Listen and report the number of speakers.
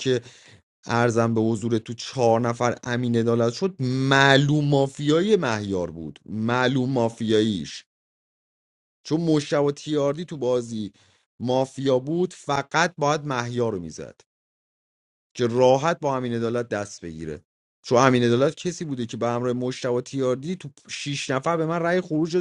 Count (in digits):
1